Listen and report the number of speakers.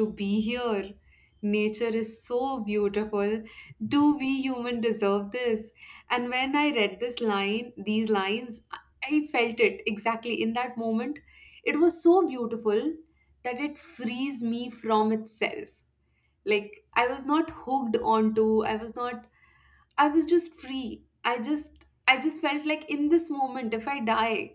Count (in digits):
1